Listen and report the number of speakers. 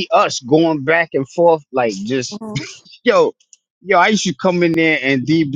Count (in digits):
1